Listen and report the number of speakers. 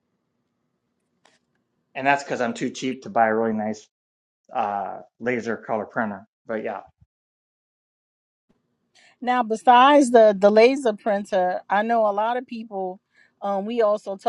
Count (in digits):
2